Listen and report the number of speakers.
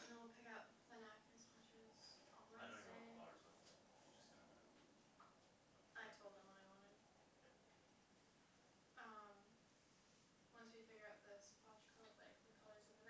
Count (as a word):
two